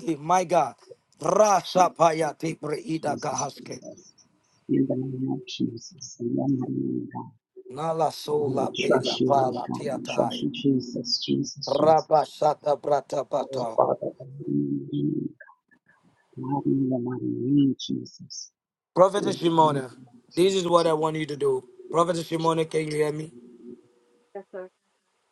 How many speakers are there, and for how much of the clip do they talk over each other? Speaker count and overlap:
2, about 22%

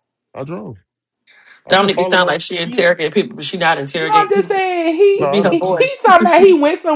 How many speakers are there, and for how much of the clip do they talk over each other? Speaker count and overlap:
3, about 28%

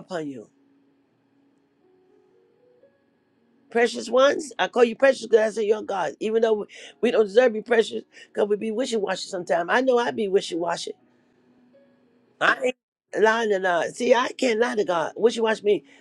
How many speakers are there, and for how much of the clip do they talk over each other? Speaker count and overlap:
1, no overlap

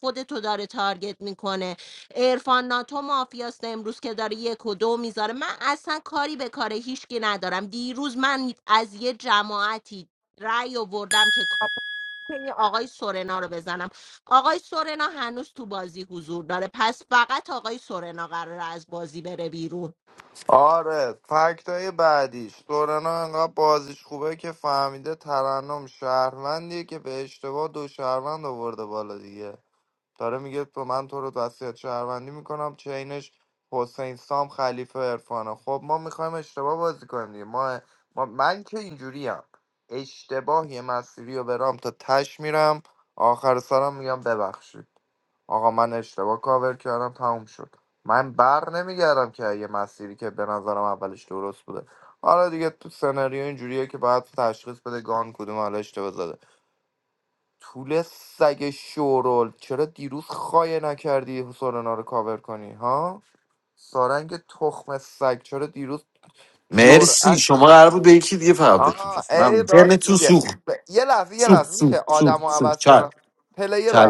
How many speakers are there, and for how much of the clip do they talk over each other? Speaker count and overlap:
3, about 6%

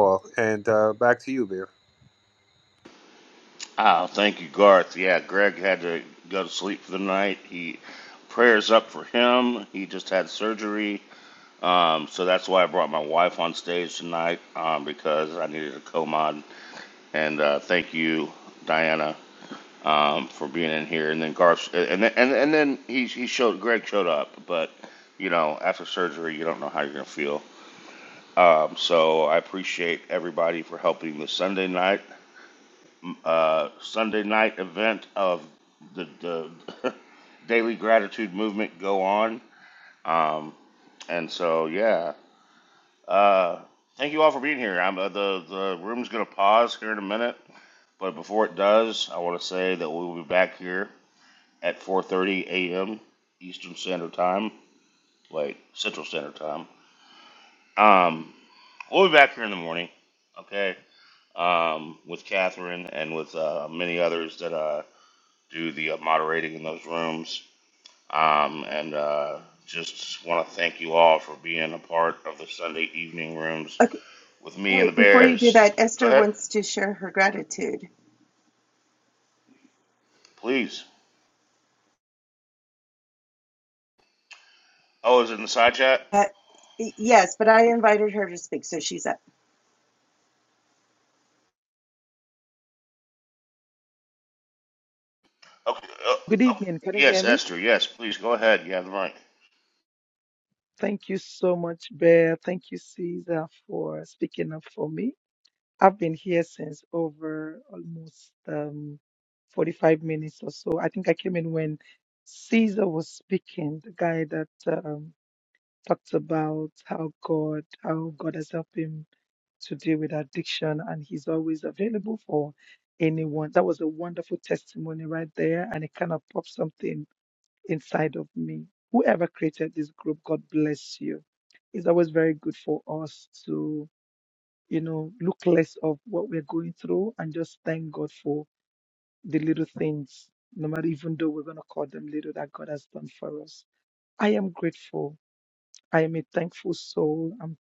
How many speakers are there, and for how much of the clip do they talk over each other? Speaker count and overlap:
4, about 2%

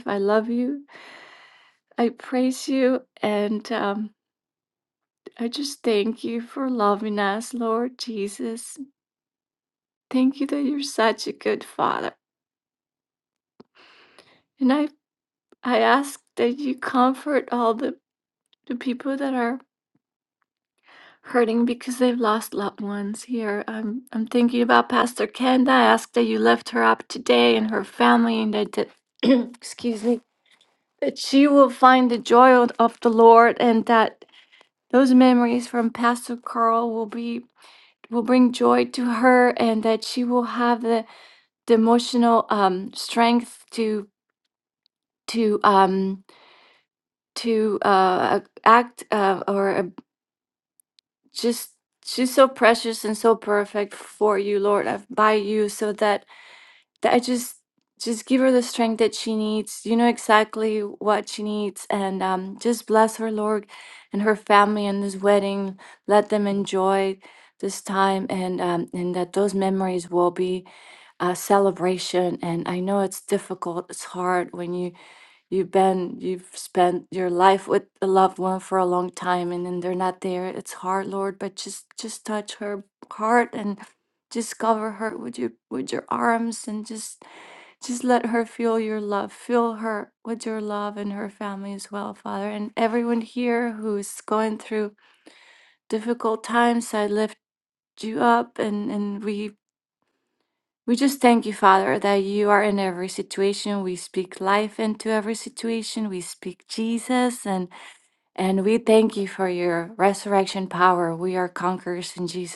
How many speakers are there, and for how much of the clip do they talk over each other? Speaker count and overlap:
1, no overlap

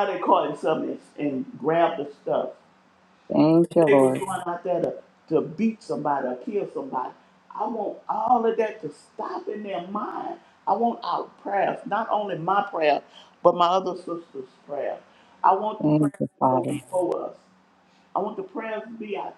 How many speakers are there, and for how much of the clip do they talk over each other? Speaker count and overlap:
2, about 5%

